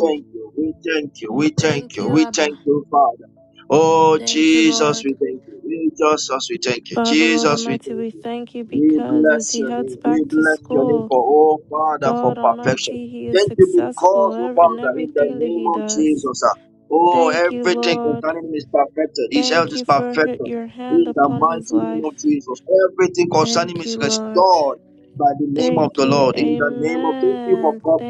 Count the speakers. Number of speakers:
2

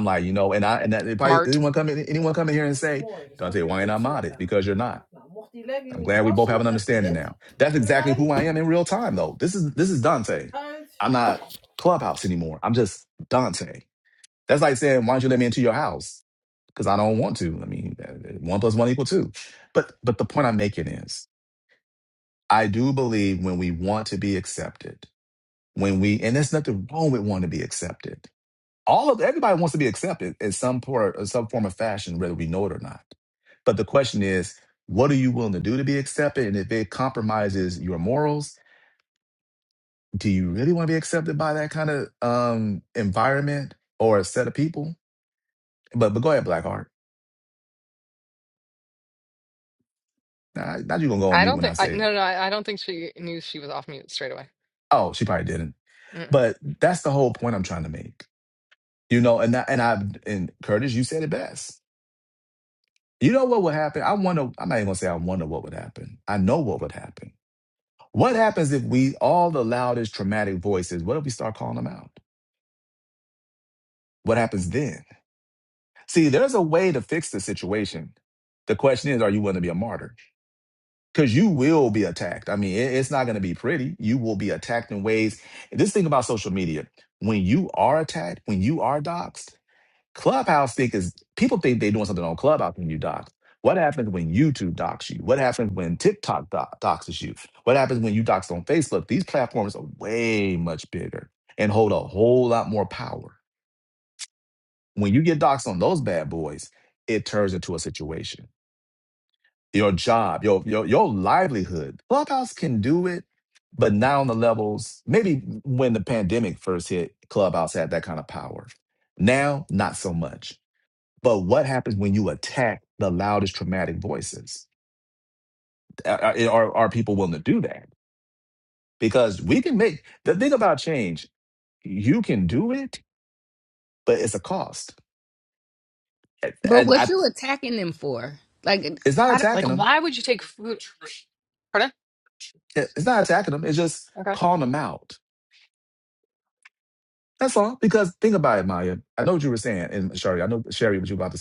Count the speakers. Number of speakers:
4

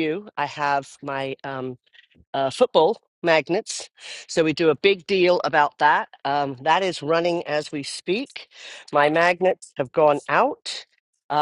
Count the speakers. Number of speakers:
1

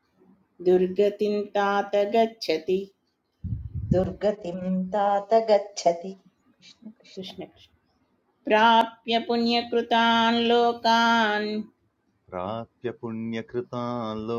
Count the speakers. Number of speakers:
3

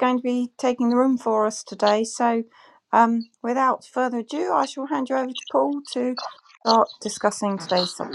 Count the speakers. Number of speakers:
1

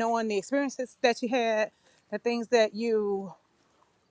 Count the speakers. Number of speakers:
1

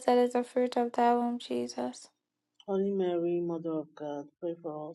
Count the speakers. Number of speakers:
2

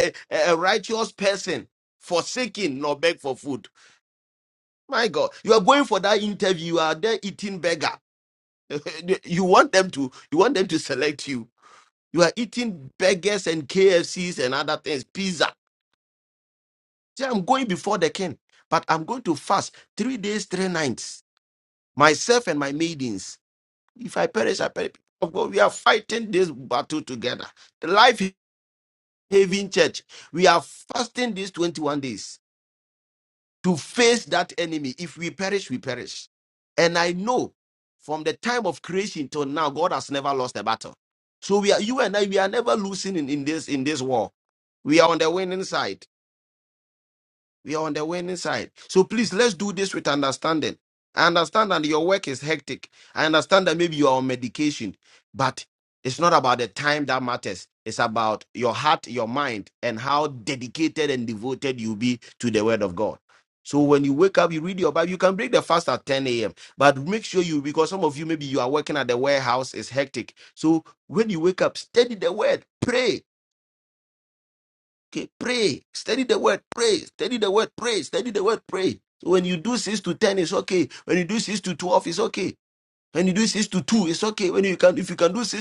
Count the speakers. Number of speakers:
1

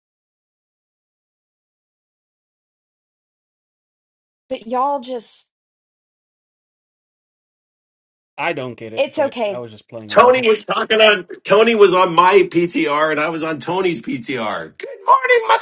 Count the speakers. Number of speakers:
3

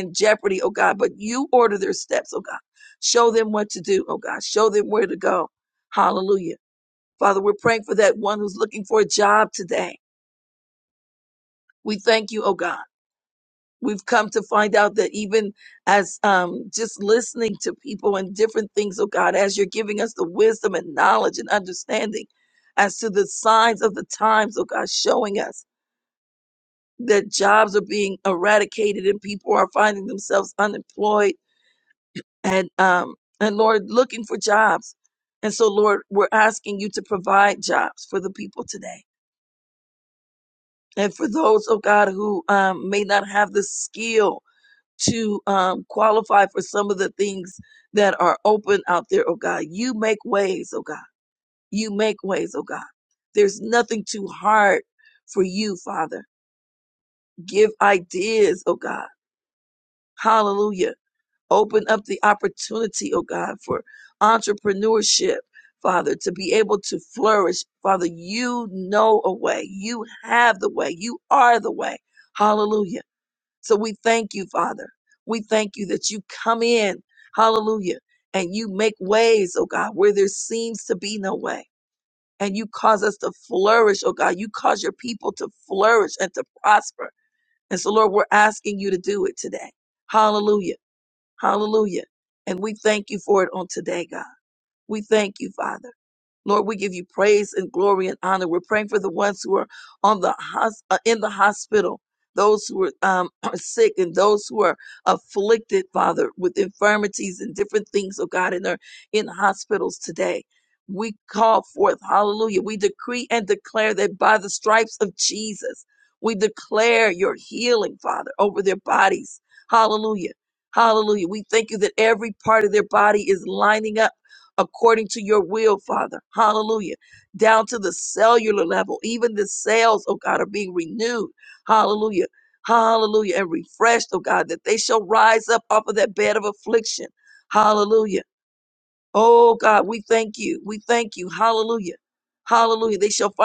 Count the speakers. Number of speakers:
1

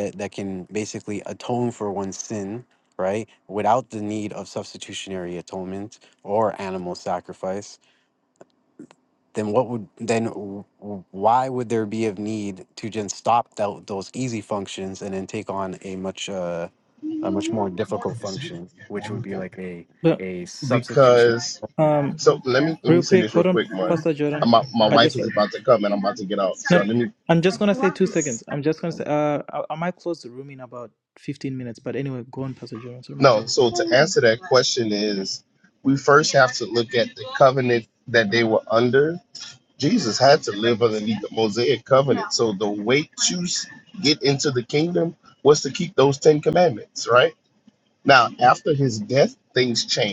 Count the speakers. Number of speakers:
3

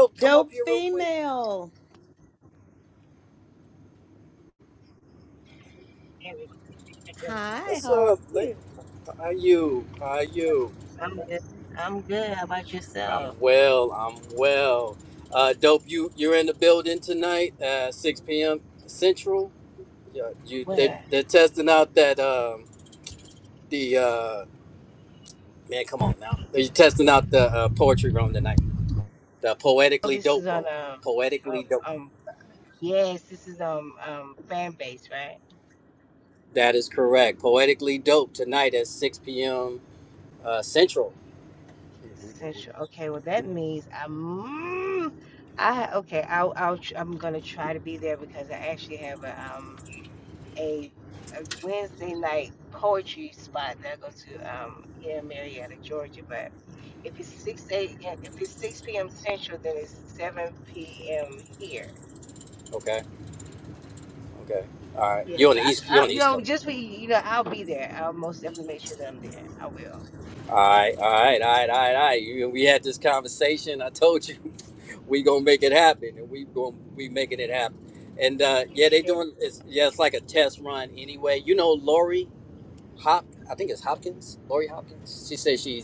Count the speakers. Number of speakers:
3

